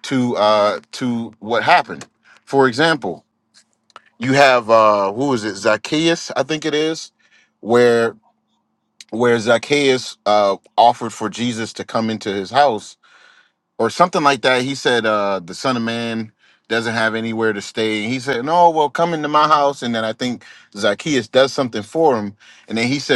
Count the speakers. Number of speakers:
one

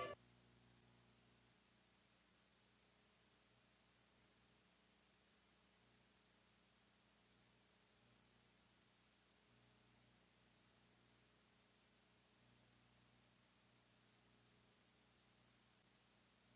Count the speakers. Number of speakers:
zero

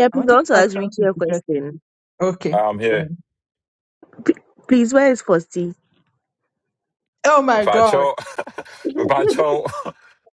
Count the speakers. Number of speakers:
three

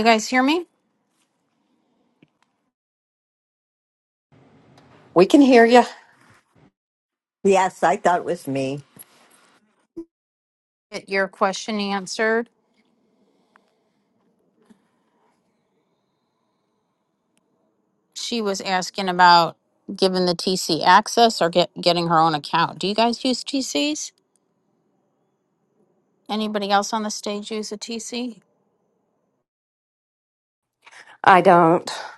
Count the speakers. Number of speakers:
three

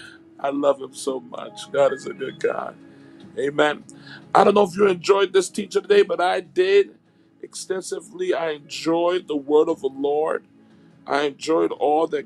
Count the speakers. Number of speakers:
one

